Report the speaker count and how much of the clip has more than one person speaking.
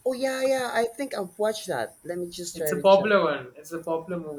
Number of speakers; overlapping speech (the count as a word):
two, about 13%